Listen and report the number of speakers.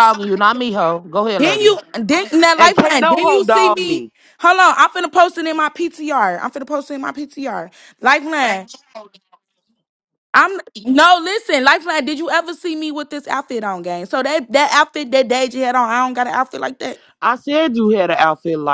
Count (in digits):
3